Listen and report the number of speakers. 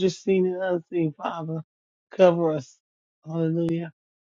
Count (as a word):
one